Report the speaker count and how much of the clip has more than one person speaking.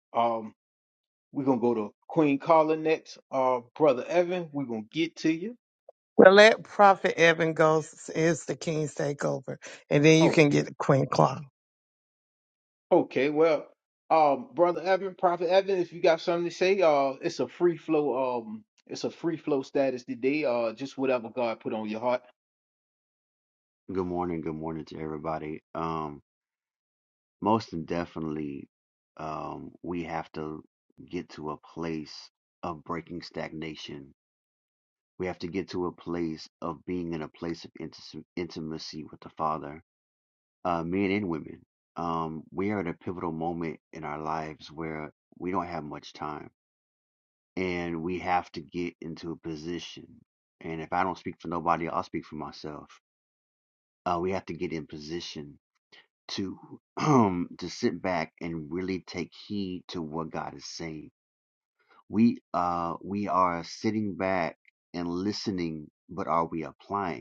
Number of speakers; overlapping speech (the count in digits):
3, about 1%